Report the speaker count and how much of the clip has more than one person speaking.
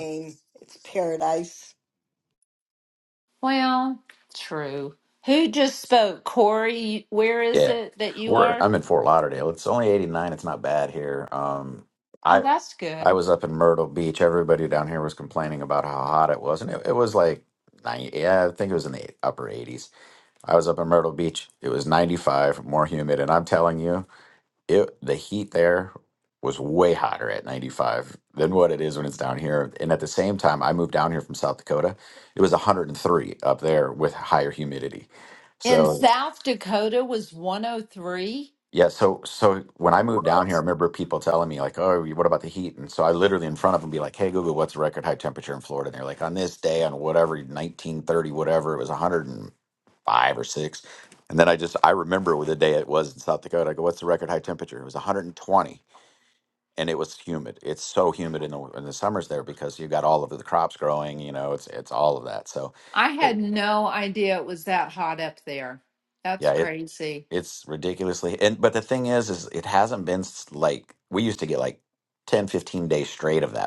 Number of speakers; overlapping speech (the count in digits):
3, about 3%